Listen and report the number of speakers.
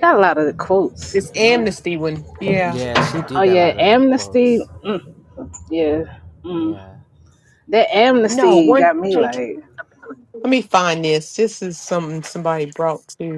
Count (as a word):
three